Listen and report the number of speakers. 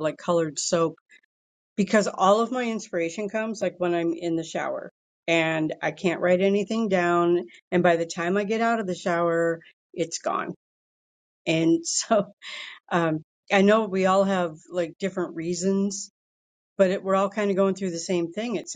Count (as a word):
one